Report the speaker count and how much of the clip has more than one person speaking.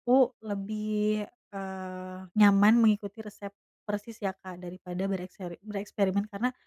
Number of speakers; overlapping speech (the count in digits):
1, no overlap